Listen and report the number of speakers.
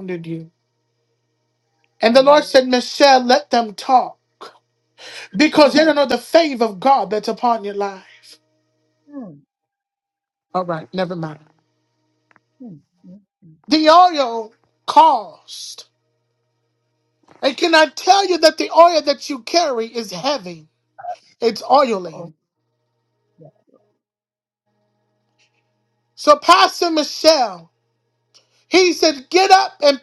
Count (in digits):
2